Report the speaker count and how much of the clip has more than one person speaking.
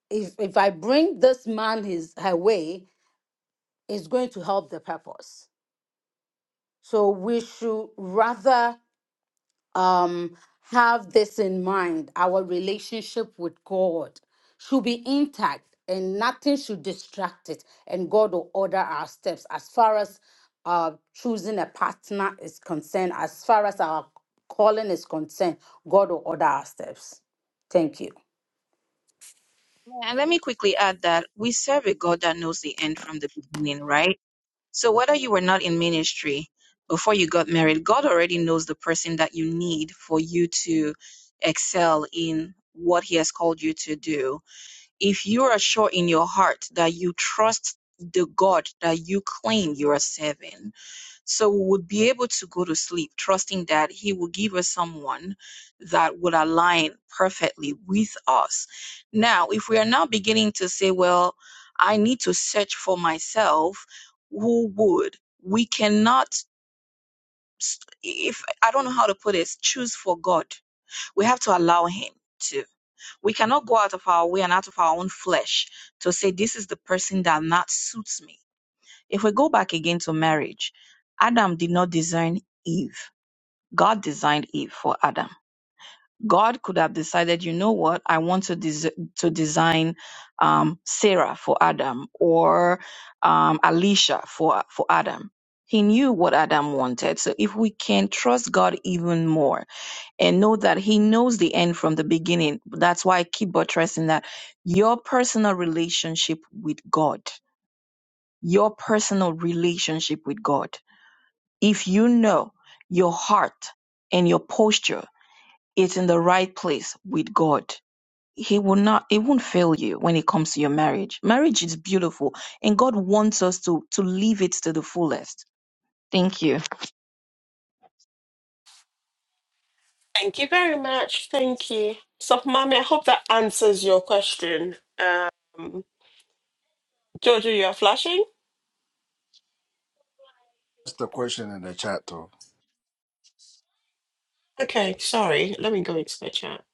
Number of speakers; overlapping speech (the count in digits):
4, no overlap